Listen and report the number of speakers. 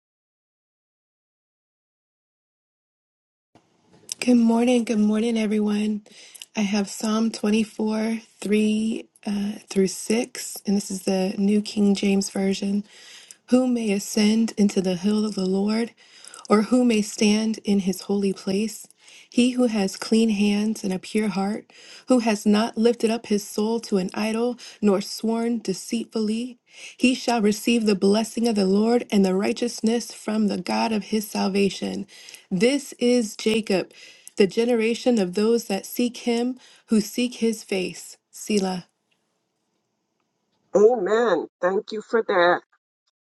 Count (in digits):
2